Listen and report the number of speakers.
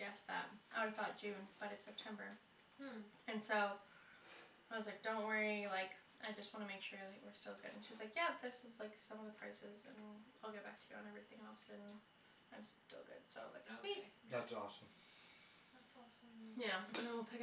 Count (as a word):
two